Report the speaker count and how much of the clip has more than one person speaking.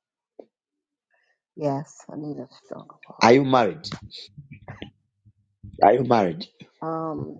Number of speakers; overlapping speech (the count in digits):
2, about 1%